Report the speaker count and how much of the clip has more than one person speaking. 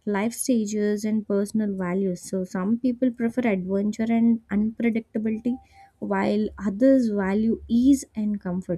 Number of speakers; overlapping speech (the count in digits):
1, no overlap